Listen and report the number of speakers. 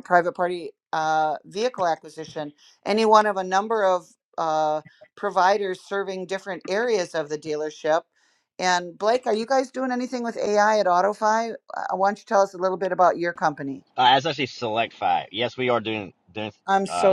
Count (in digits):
2